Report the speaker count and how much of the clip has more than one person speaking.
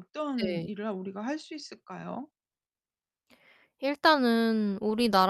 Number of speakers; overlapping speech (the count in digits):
2, about 6%